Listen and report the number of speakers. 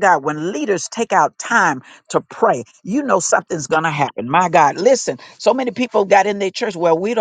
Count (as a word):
one